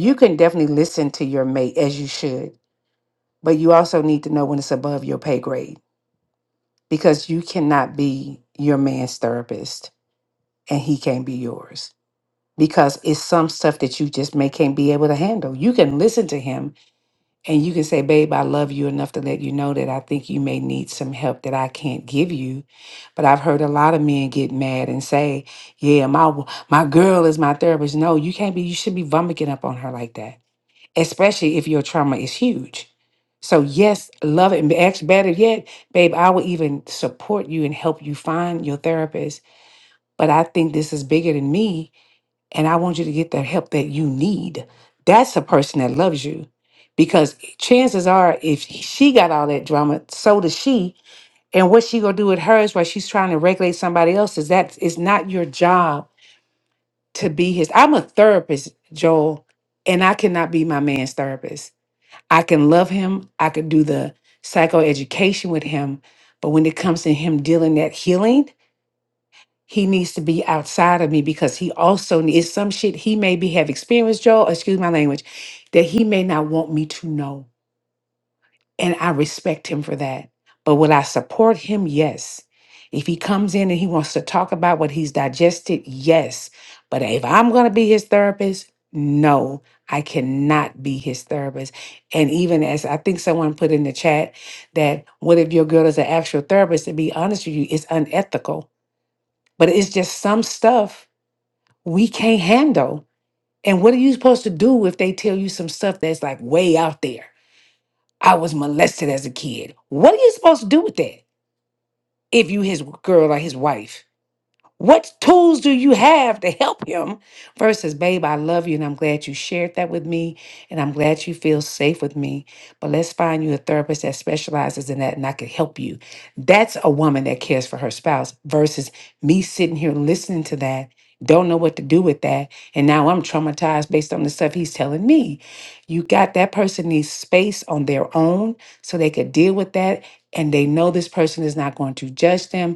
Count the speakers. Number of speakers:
one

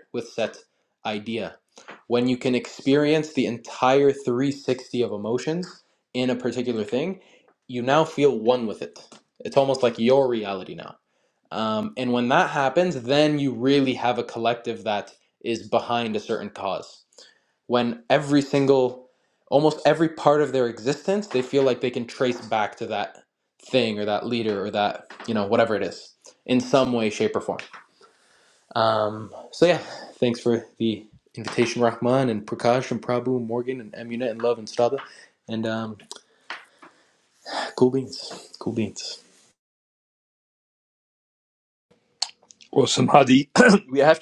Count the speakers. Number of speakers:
two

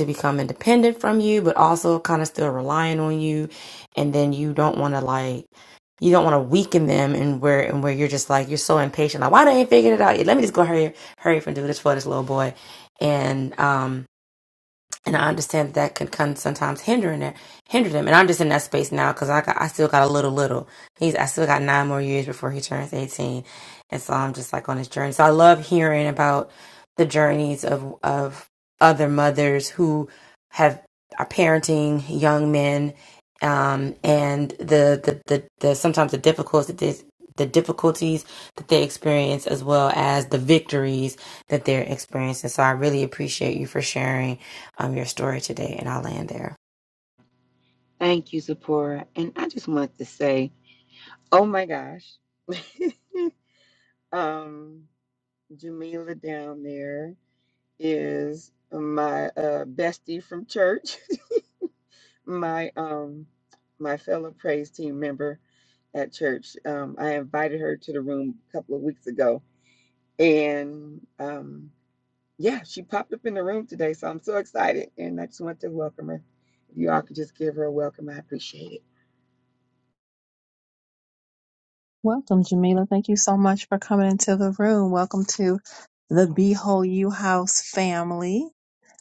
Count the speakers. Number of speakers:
three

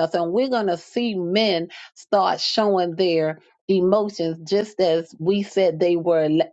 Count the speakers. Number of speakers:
one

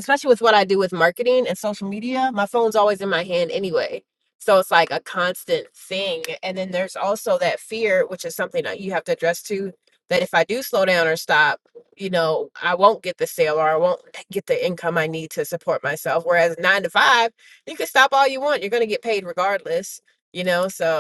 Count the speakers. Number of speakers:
one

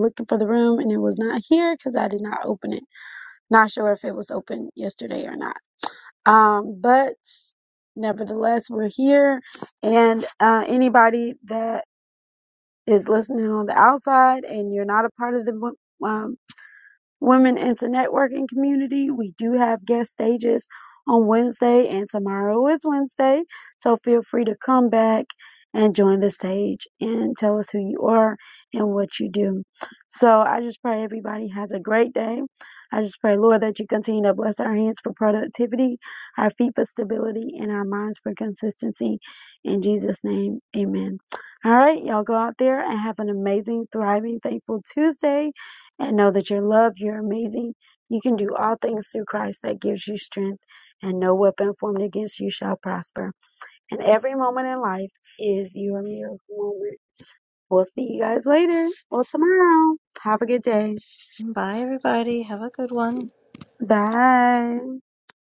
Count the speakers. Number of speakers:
two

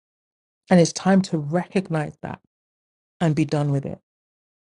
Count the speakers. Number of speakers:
one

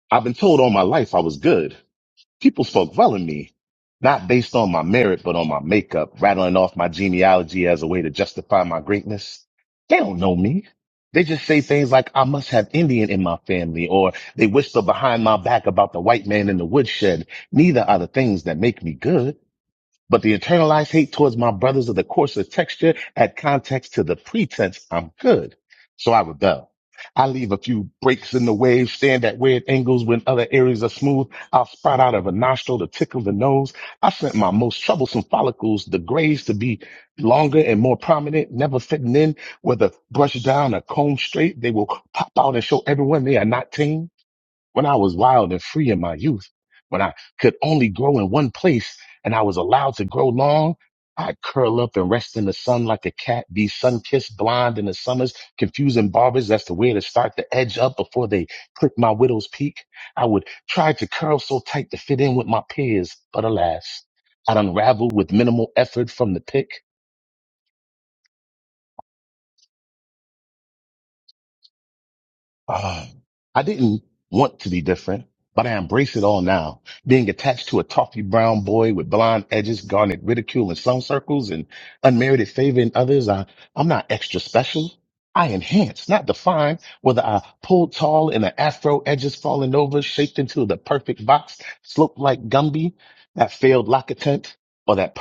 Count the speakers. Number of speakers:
one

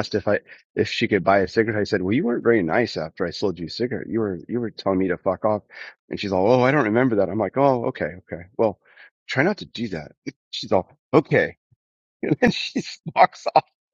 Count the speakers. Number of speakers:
one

